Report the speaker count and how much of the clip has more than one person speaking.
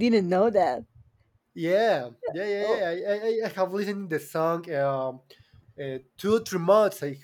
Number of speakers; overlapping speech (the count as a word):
two, about 3%